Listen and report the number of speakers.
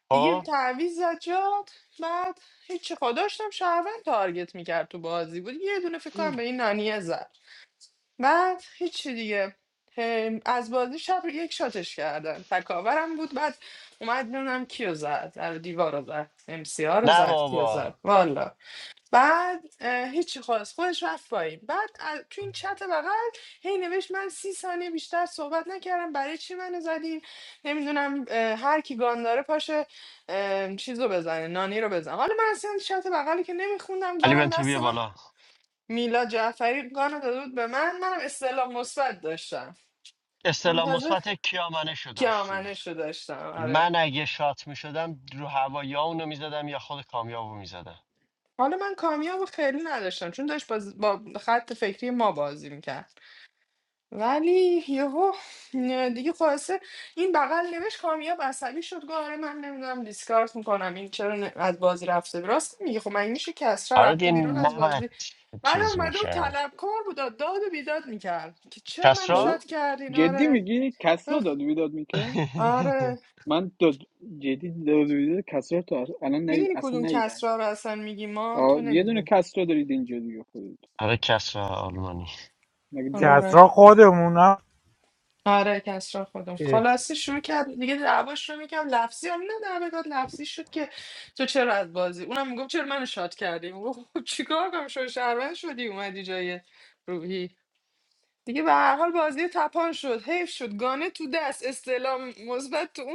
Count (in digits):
4